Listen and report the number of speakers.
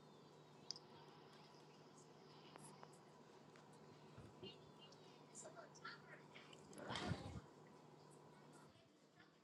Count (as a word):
zero